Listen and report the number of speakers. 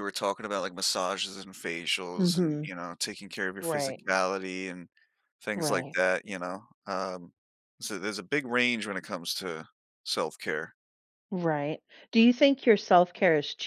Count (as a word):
two